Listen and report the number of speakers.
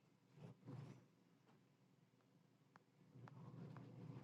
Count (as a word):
zero